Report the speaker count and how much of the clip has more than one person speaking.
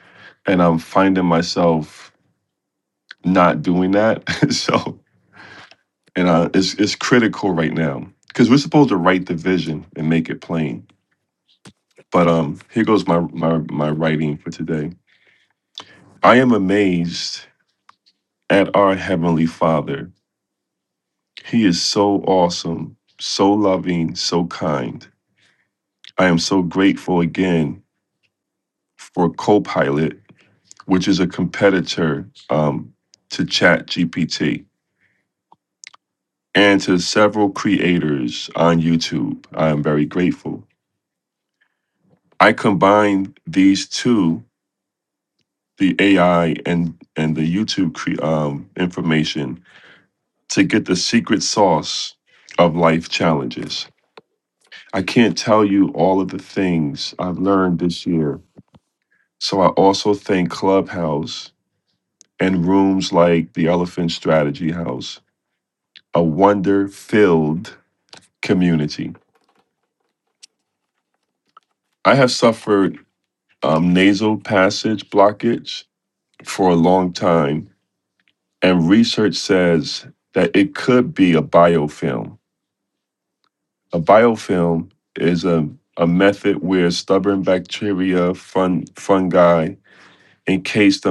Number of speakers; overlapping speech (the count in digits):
1, no overlap